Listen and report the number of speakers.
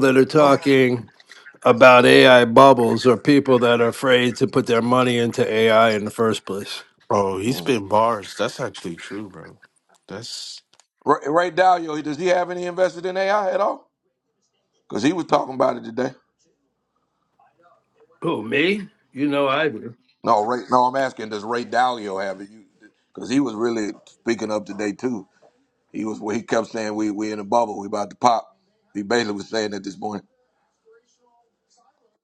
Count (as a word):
three